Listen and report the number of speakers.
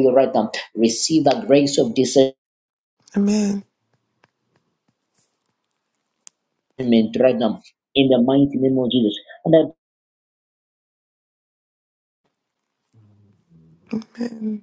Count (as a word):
two